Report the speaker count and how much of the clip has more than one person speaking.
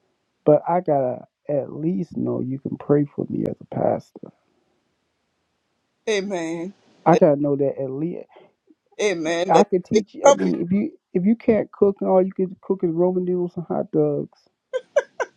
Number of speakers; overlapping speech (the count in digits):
2, about 7%